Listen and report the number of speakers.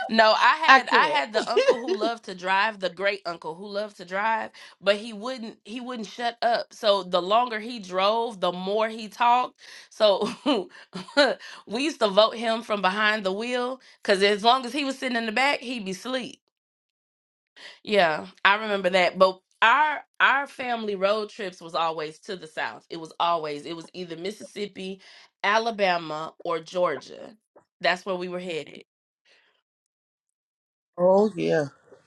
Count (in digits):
2